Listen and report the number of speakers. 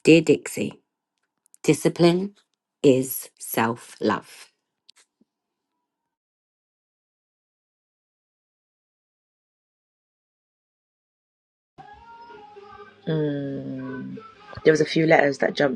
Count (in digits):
2